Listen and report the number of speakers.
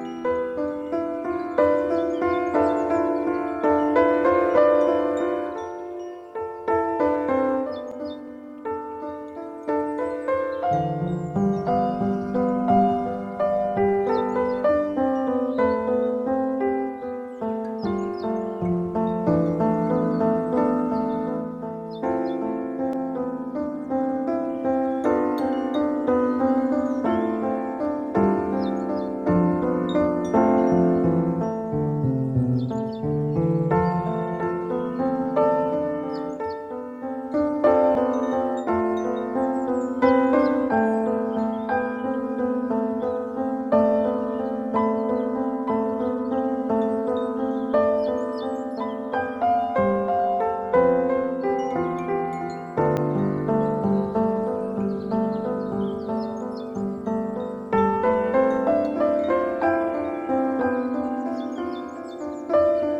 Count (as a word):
zero